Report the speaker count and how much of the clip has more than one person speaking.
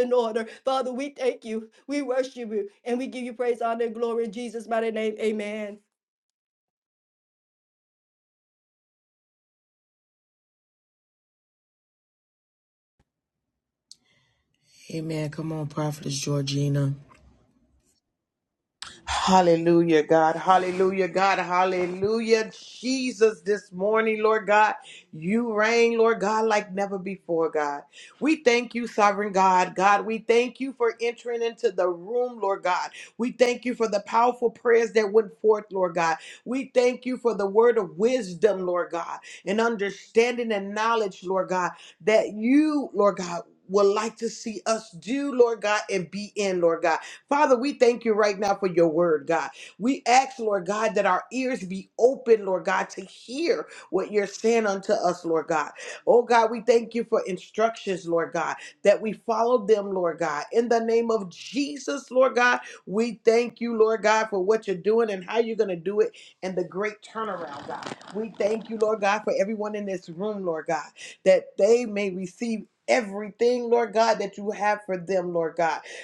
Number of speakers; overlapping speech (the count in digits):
3, no overlap